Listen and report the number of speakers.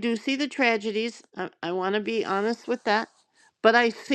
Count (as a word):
one